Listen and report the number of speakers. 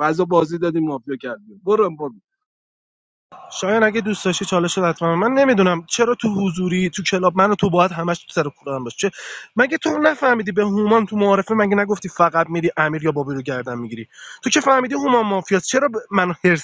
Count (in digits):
2